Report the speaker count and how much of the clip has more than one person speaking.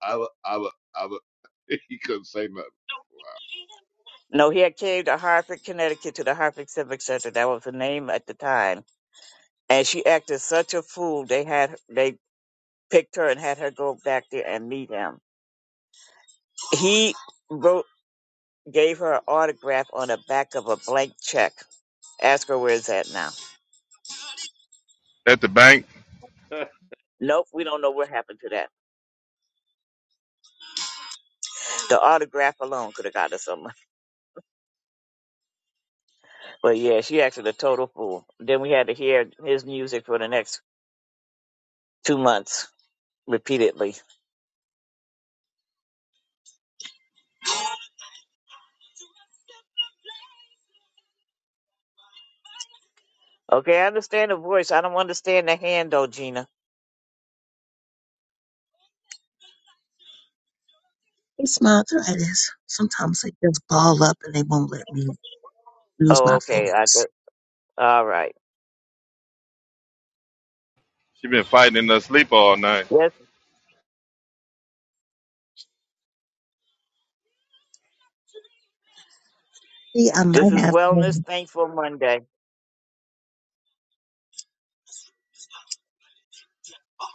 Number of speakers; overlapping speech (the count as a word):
four, about 2%